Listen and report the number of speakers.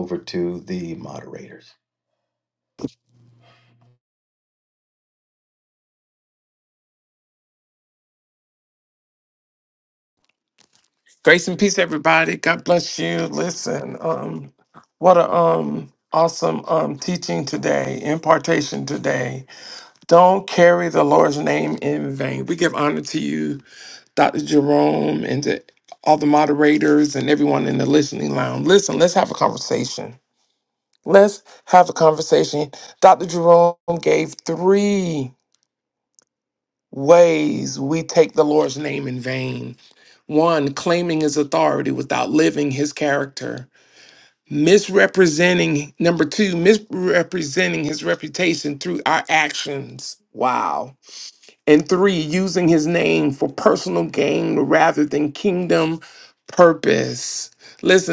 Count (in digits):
2